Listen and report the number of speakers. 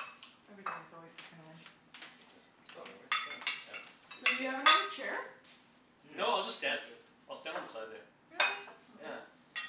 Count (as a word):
three